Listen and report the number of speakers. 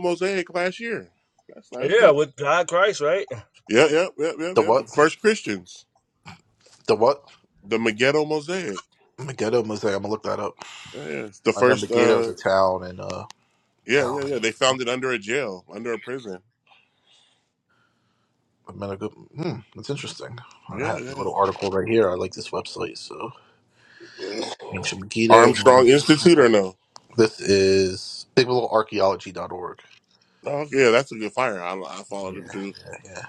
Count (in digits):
3